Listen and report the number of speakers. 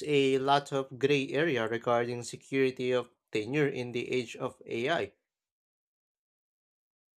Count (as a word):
one